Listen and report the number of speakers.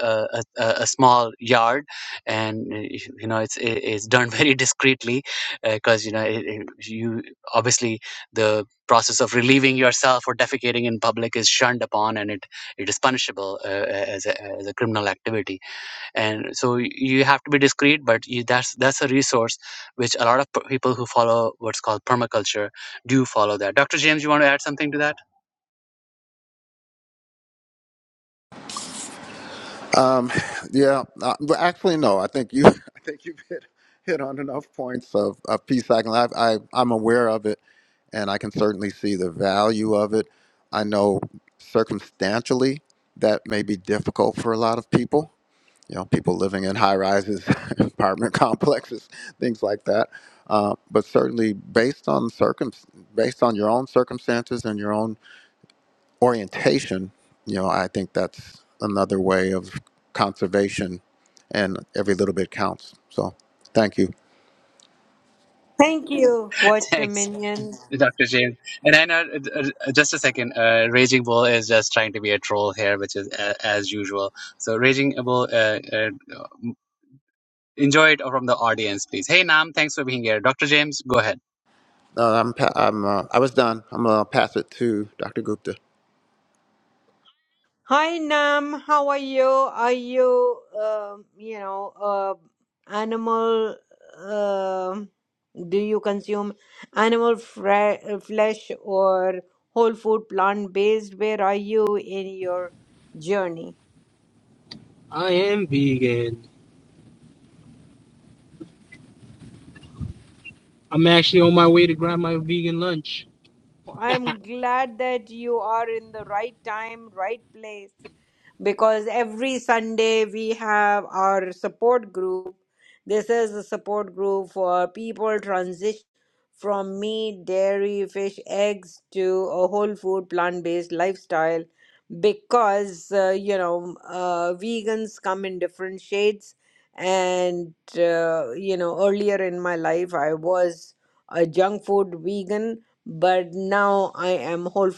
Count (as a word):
four